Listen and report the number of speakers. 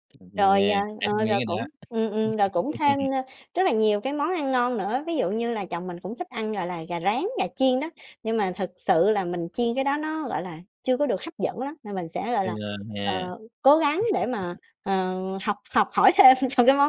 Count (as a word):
two